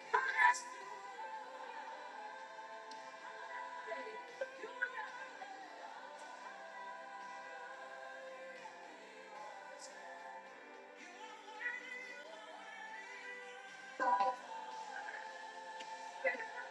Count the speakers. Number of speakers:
zero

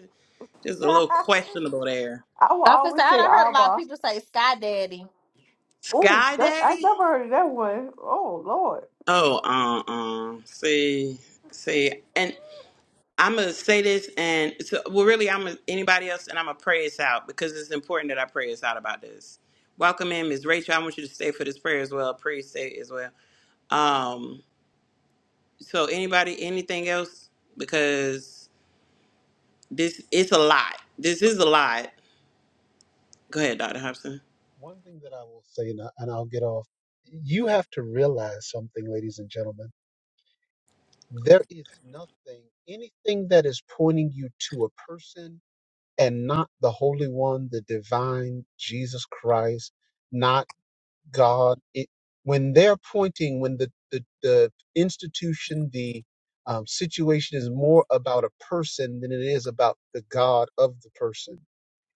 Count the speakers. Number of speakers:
four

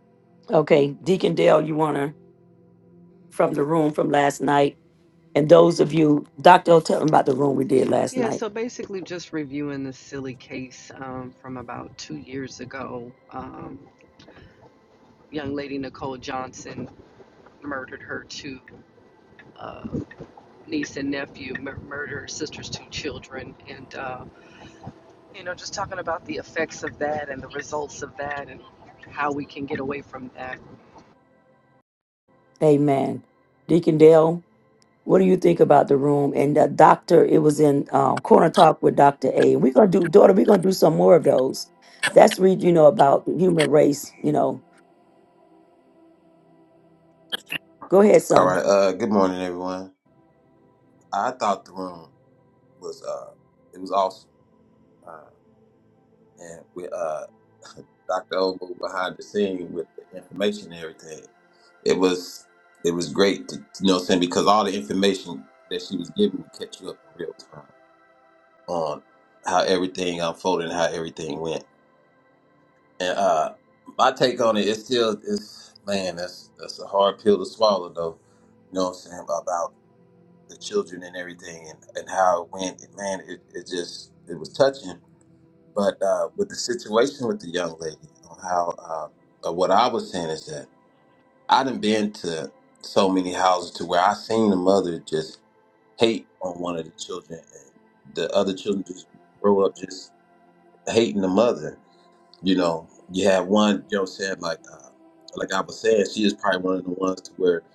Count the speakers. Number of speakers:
three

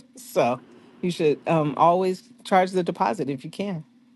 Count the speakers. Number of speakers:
one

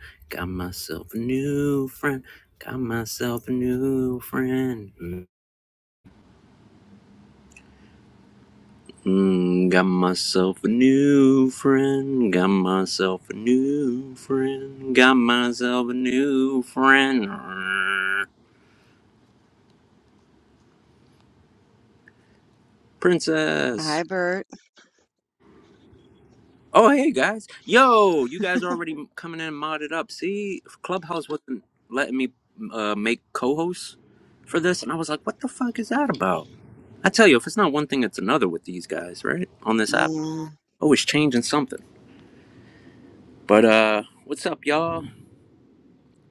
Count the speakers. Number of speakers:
two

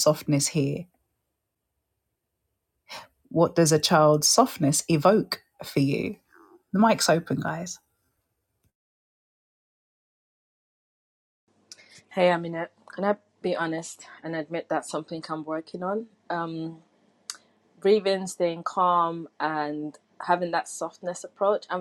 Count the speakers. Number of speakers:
two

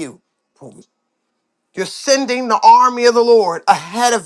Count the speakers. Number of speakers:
one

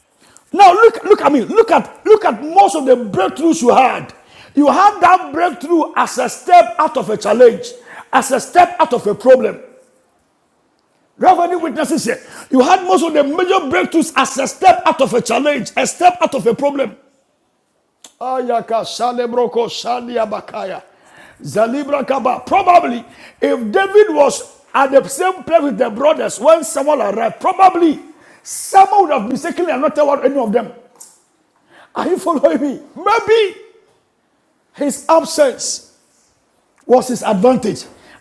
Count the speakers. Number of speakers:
one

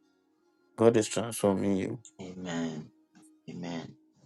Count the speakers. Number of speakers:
two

